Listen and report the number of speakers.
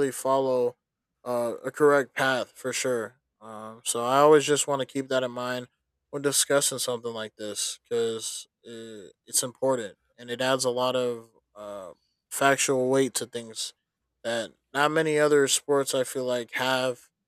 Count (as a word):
one